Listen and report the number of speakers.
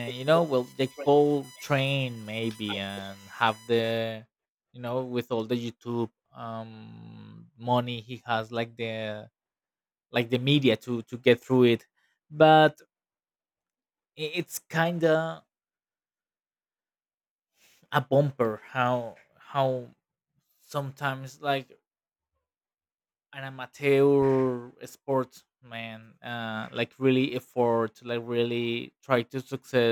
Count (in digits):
1